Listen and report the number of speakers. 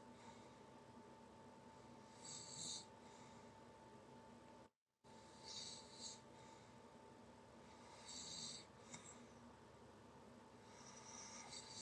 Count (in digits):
0